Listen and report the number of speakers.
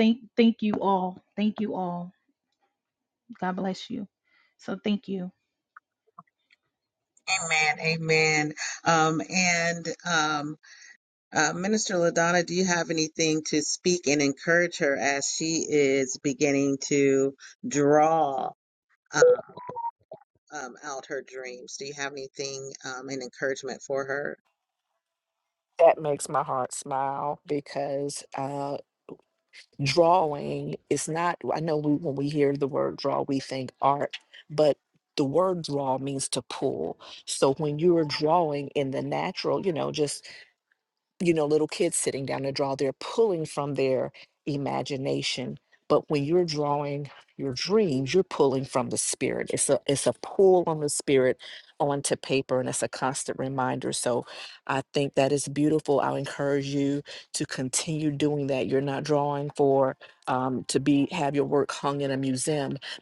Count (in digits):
3